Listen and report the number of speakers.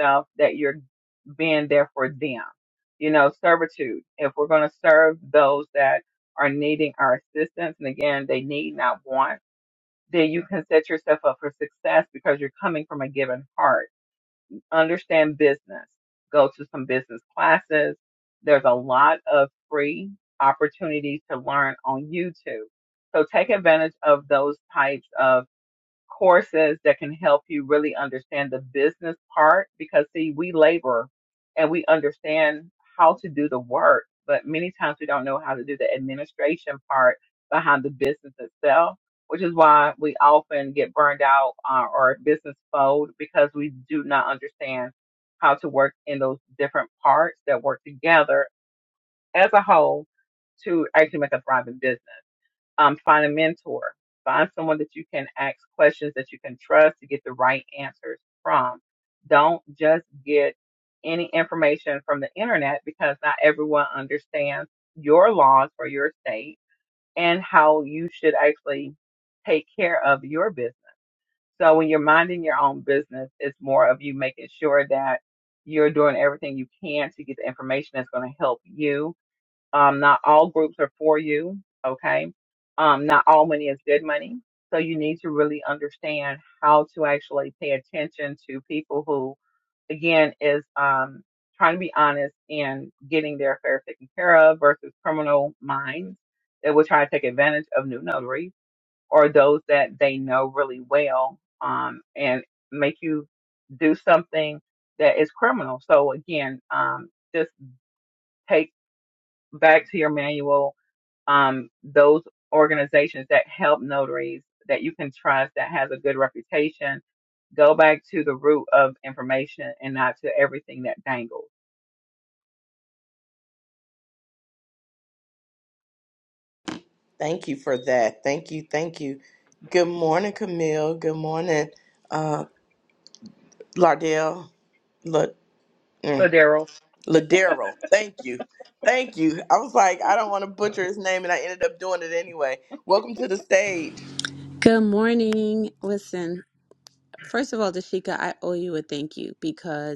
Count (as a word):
three